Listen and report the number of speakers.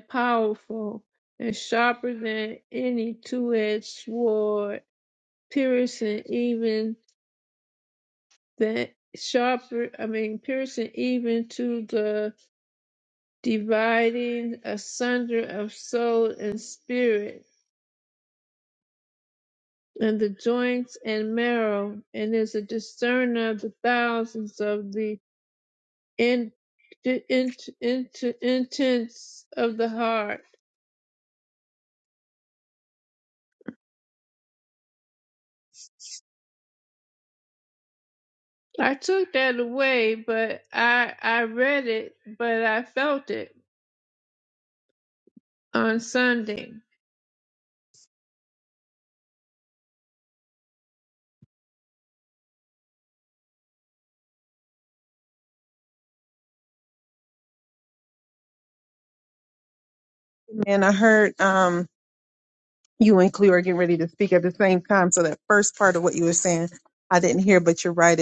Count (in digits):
2